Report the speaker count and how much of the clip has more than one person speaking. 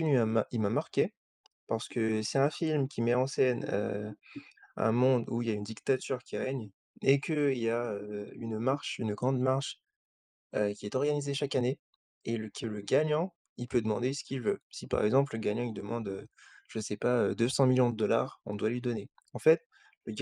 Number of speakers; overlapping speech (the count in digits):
1, no overlap